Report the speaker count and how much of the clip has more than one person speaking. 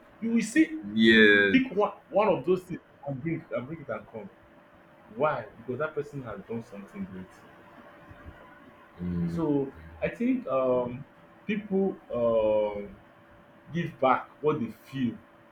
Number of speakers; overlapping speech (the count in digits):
2, about 1%